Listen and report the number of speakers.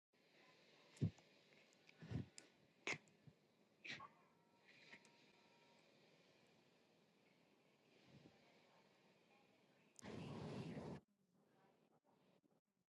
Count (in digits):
0